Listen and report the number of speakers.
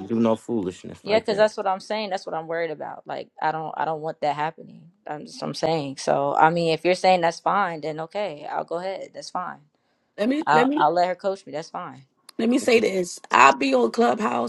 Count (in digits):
3